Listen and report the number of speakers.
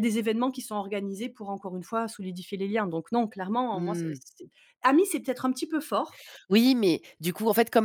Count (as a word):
two